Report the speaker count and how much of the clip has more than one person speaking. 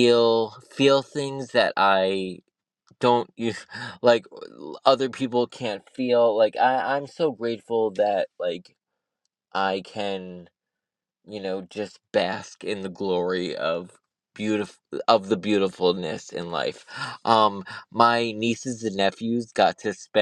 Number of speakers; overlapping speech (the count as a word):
one, no overlap